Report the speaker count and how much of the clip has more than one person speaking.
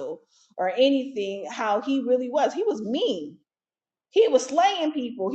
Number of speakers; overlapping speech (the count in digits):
1, no overlap